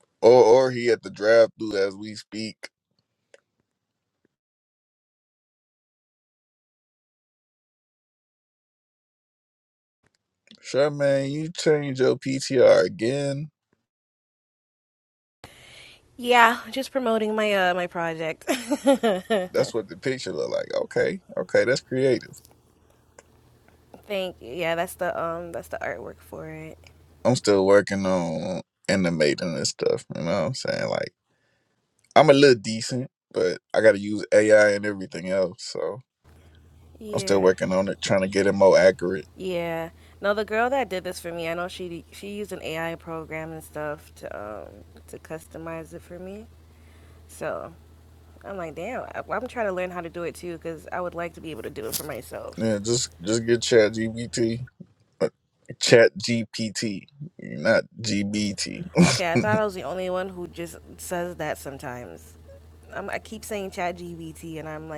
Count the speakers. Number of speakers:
2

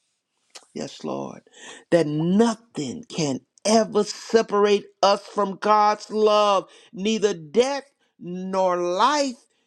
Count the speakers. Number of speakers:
1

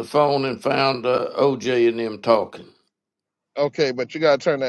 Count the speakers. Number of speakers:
2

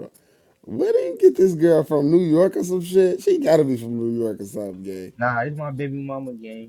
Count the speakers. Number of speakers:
2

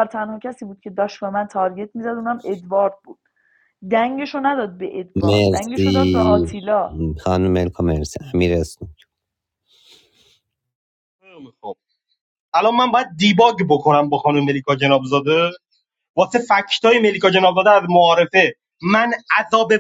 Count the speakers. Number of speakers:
3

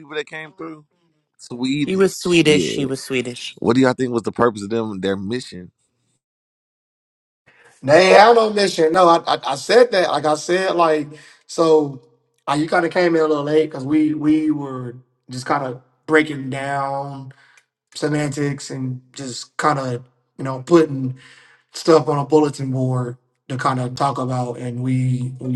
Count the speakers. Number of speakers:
3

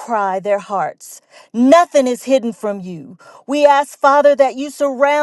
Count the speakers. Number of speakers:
1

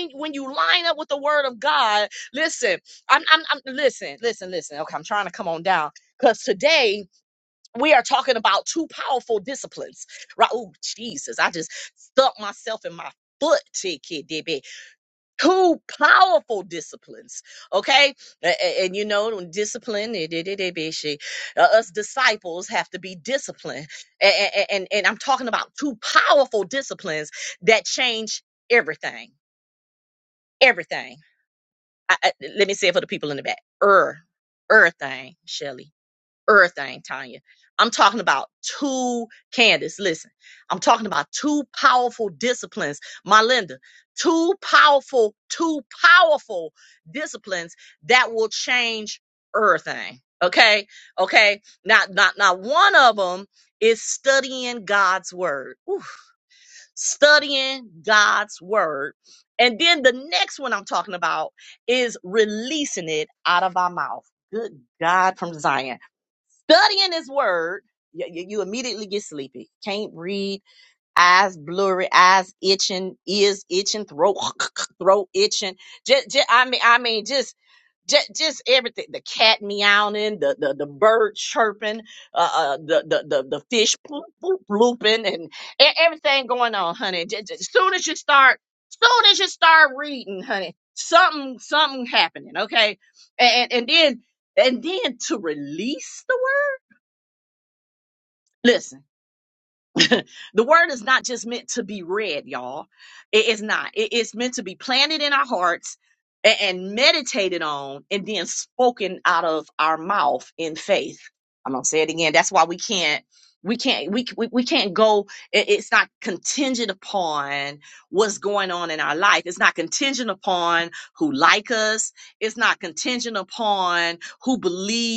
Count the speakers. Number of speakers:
1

